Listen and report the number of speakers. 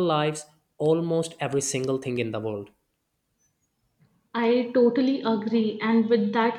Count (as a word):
two